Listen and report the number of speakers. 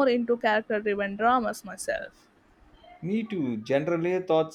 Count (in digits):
2